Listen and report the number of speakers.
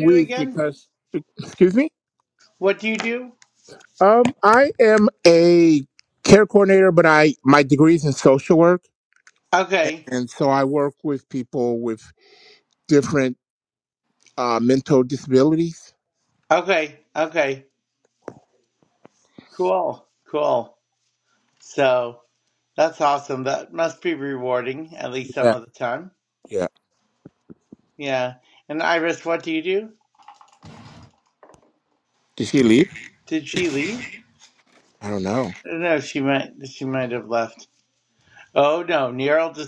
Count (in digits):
2